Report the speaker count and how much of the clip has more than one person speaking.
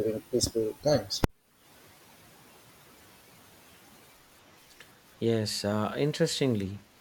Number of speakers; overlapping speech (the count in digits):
2, no overlap